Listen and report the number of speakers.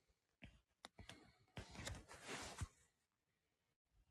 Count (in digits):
0